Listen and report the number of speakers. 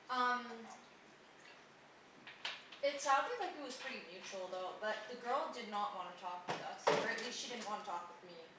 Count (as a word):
one